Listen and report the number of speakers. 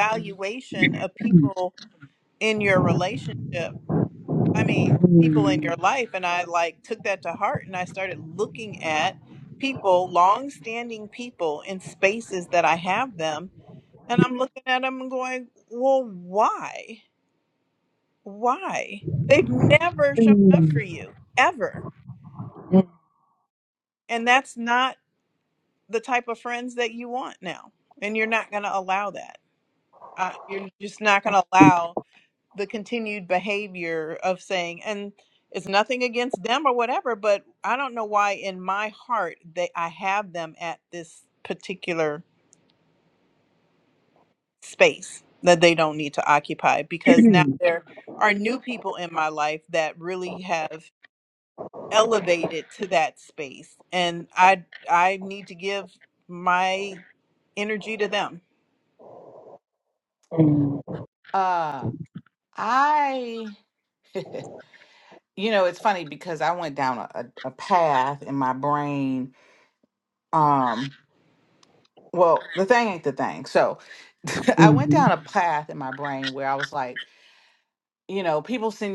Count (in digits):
3